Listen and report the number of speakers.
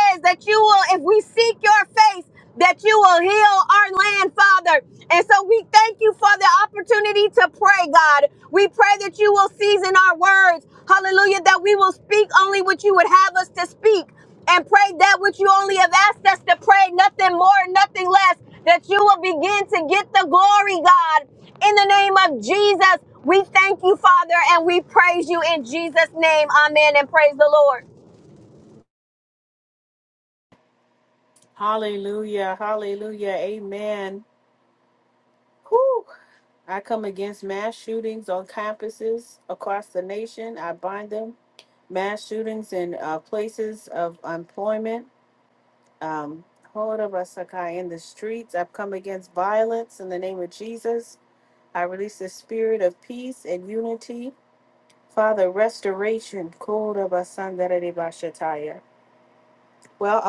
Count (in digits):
2